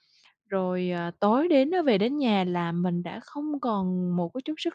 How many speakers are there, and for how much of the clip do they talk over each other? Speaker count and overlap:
1, no overlap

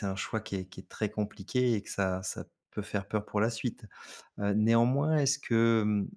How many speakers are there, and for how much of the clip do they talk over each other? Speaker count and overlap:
1, no overlap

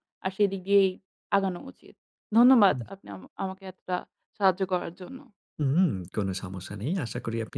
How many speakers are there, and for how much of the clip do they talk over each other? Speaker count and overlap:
2, about 2%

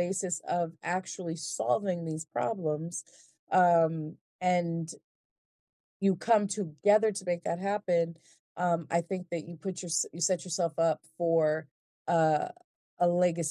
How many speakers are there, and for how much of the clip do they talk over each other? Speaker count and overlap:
1, no overlap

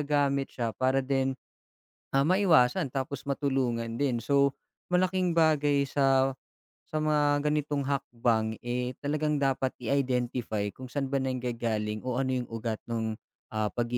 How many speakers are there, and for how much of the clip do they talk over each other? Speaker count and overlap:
1, no overlap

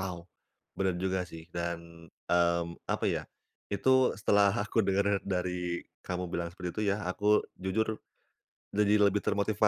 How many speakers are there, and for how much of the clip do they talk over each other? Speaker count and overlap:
1, no overlap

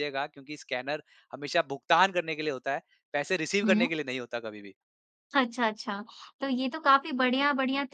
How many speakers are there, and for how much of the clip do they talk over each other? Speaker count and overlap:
2, about 3%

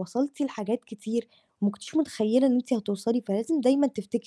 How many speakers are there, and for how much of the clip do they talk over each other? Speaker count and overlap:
1, no overlap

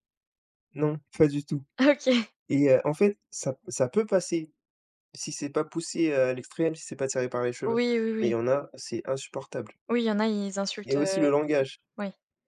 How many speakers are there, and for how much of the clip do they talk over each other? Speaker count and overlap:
2, about 6%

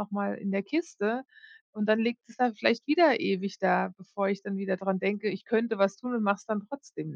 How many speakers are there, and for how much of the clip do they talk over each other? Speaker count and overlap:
1, no overlap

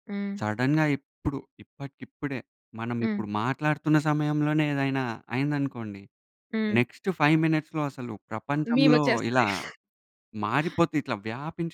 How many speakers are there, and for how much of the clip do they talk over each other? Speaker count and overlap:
2, about 9%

